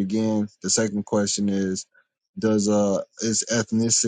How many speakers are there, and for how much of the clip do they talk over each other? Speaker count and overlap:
one, no overlap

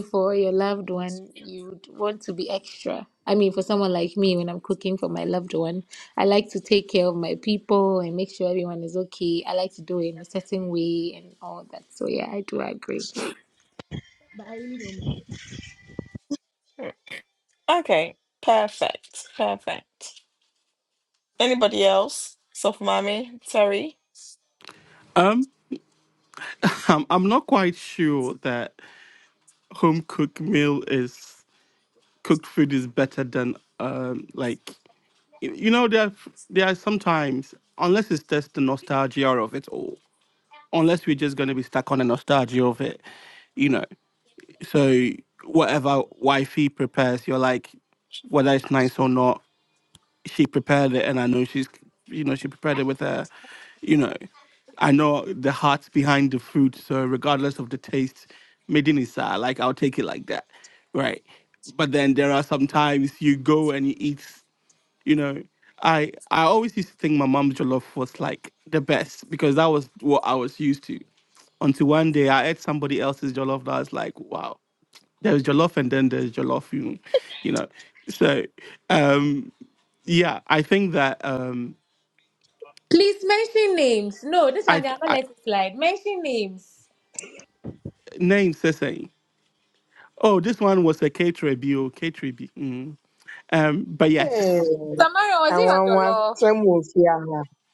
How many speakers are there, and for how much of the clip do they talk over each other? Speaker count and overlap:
four, about 2%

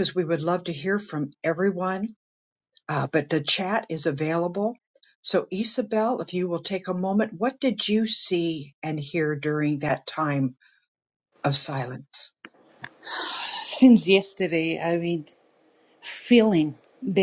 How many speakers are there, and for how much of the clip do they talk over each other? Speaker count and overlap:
two, no overlap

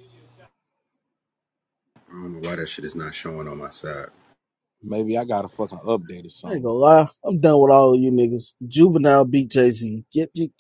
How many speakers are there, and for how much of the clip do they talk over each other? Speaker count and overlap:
three, about 1%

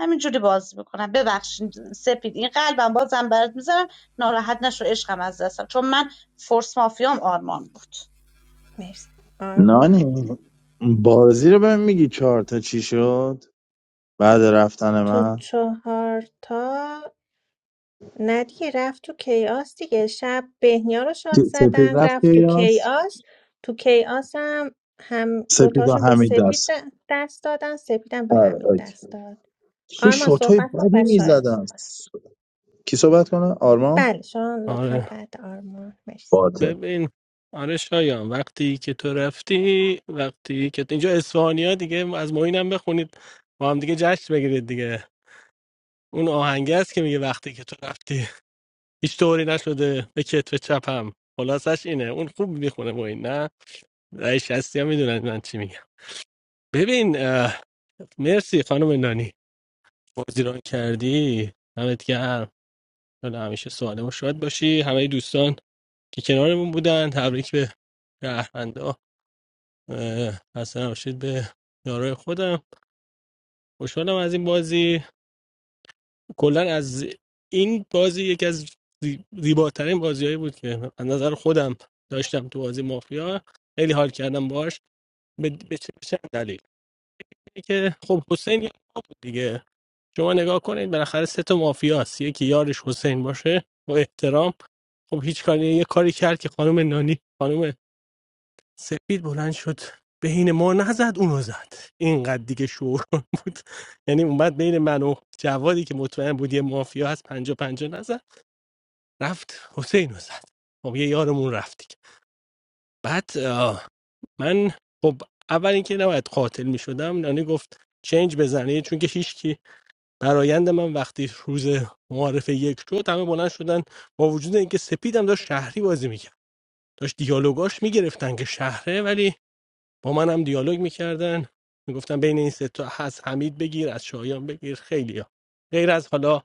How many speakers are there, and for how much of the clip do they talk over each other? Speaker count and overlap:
four, about 4%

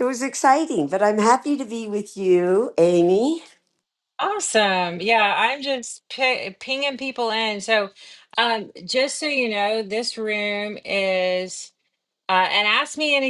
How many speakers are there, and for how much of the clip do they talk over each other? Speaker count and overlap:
two, no overlap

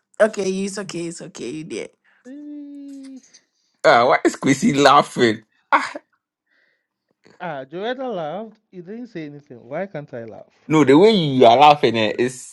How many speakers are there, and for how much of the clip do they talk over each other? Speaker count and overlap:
three, no overlap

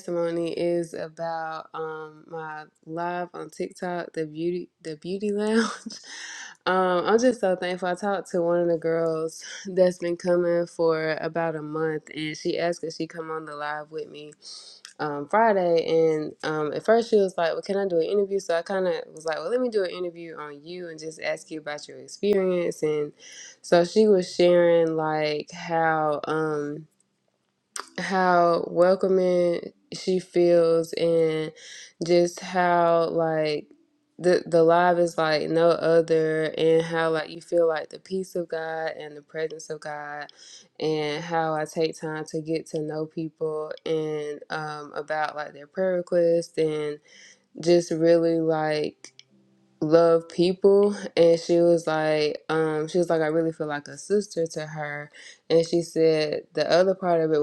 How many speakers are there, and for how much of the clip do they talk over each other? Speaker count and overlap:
one, no overlap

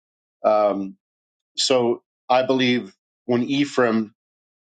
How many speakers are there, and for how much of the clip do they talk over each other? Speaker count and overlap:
one, no overlap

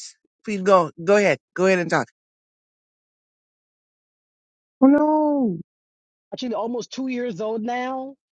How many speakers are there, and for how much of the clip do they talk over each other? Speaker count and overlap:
two, no overlap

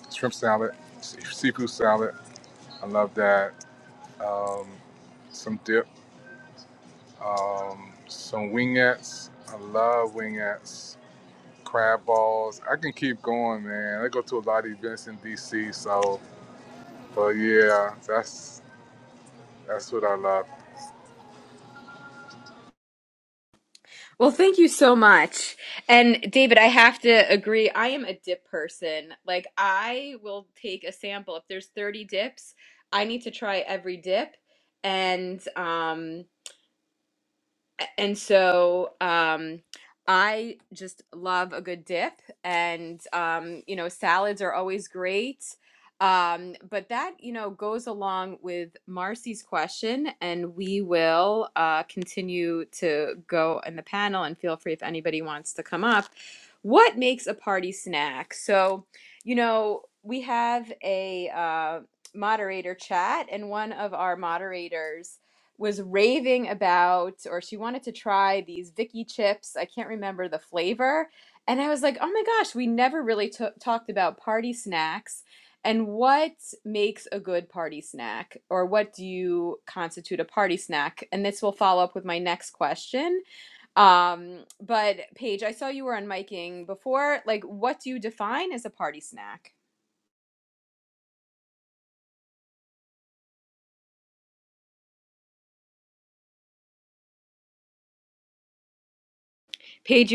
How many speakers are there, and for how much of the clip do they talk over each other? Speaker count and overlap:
two, no overlap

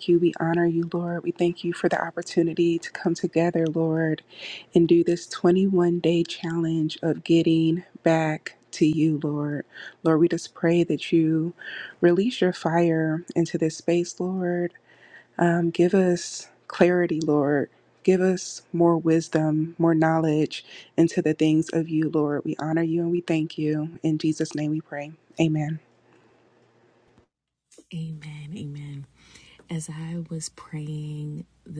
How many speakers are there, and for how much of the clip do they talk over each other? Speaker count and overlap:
two, no overlap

